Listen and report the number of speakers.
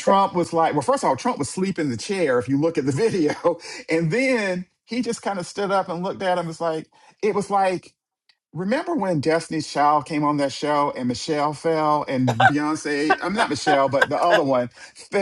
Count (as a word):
one